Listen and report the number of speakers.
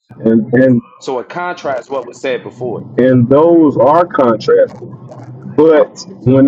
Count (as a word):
two